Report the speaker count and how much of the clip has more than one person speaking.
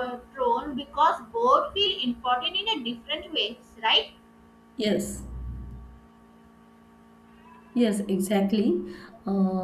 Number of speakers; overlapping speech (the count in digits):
2, no overlap